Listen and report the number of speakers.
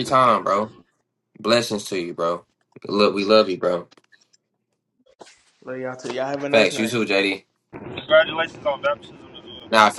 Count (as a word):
three